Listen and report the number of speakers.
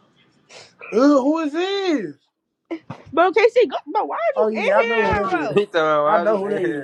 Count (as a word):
three